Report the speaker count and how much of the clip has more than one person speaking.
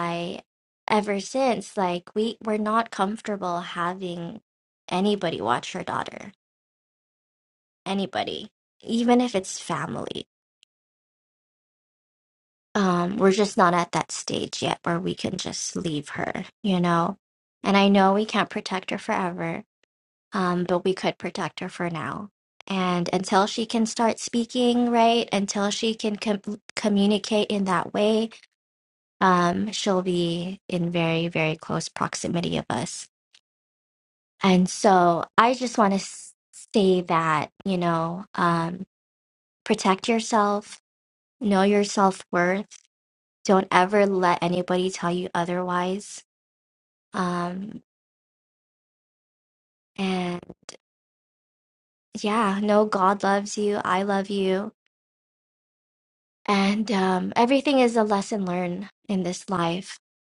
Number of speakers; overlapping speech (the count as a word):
one, no overlap